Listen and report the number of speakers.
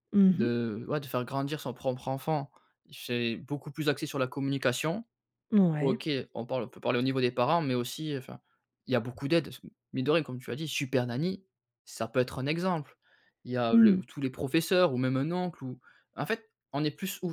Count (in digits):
2